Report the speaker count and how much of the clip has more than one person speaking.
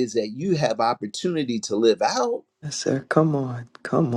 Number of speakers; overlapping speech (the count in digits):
2, no overlap